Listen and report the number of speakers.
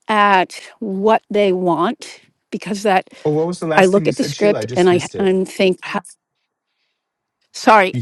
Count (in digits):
2